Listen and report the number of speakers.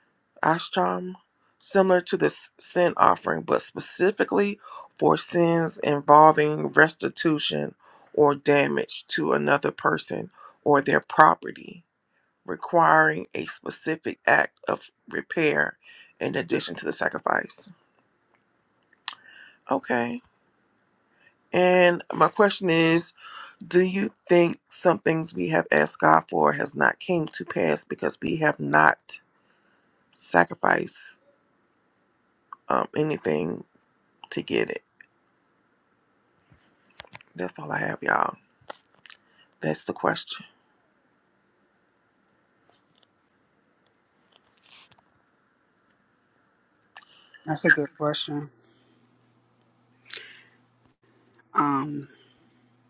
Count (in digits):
2